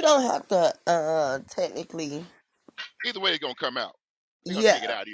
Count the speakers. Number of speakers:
two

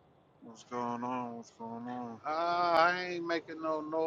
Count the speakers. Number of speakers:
two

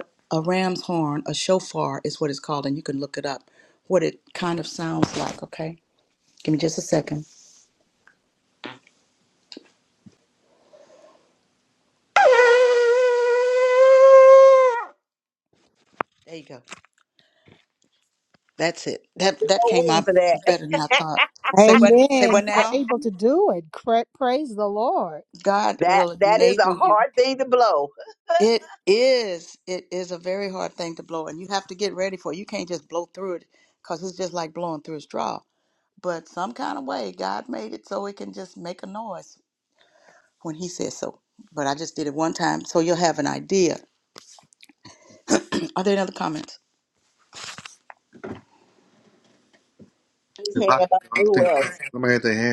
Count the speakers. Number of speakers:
four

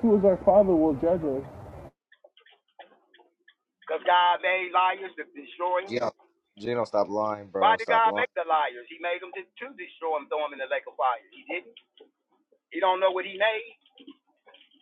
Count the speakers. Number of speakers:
three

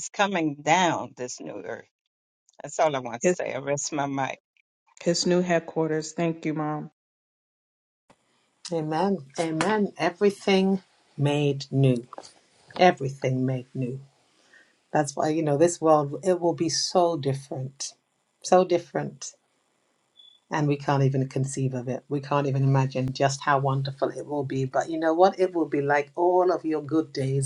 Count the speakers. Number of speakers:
three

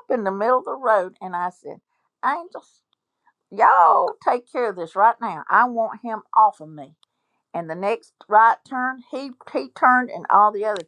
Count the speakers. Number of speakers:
one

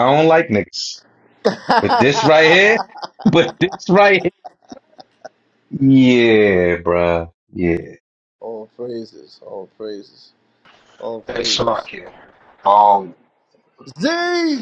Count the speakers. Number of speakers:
three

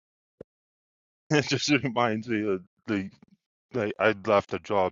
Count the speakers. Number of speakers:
one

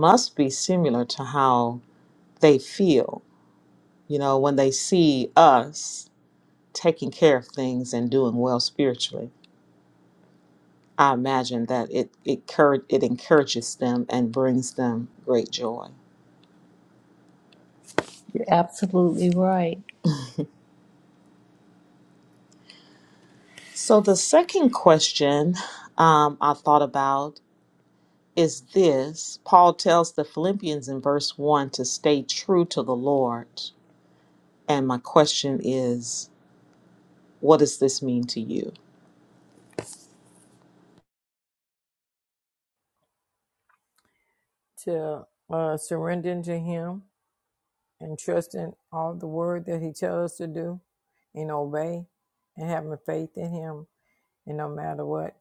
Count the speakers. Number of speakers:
three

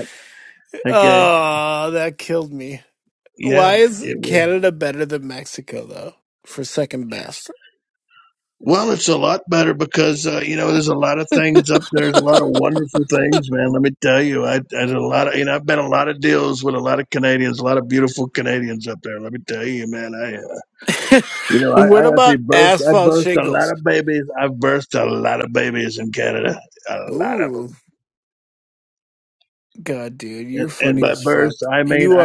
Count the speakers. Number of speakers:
two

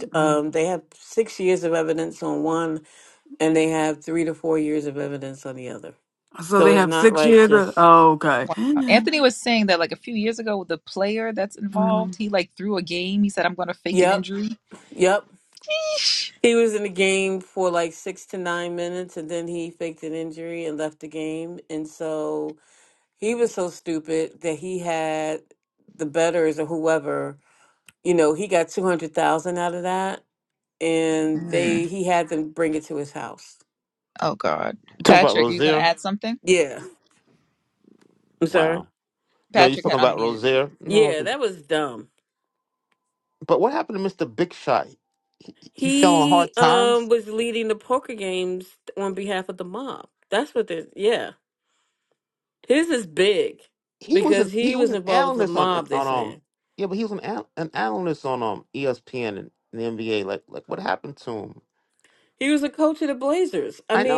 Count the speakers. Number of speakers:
four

